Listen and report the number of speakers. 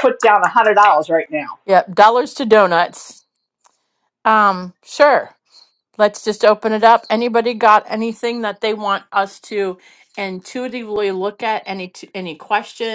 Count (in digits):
2